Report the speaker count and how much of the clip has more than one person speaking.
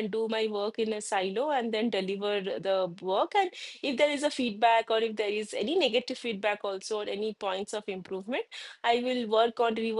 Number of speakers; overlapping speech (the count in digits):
1, no overlap